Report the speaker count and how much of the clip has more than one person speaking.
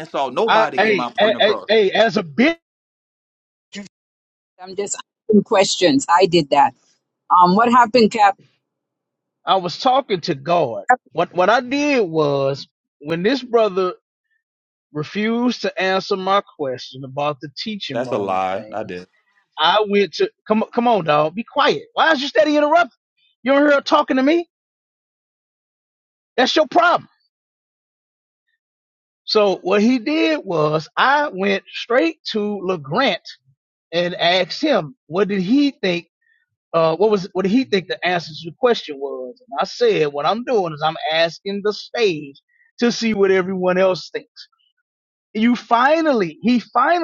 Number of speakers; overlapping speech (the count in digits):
3, about 4%